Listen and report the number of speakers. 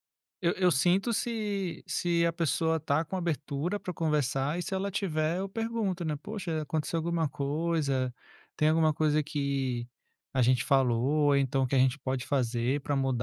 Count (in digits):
1